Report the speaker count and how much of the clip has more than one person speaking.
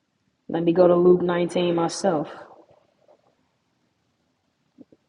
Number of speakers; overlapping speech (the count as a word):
one, no overlap